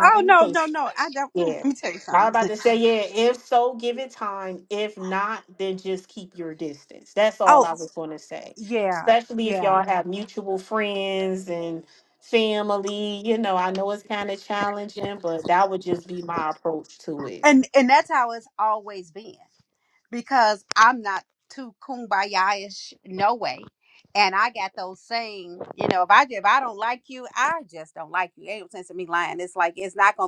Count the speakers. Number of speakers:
2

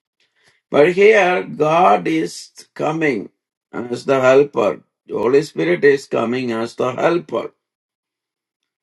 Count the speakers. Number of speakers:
1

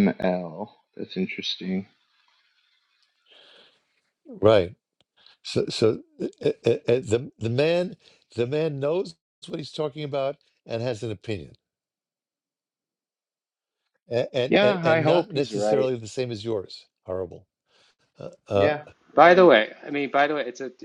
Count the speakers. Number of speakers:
3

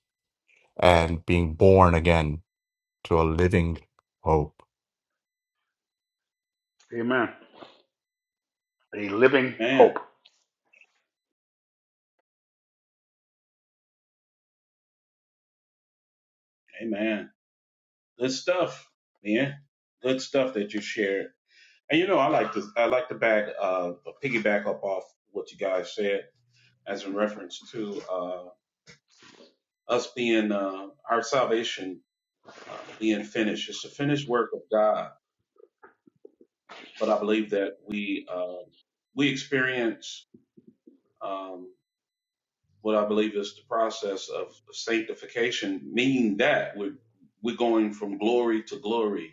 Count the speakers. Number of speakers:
3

